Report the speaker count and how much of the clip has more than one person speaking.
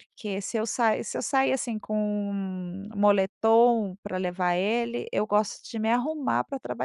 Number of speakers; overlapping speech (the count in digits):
1, no overlap